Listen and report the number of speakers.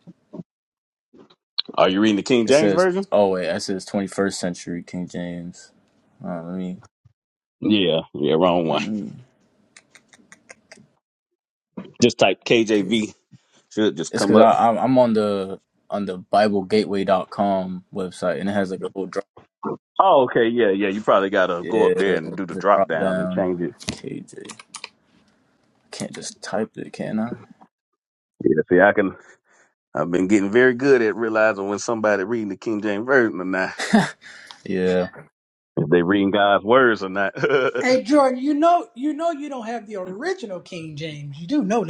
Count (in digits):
3